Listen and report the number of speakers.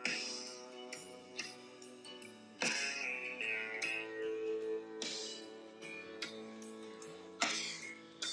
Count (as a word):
zero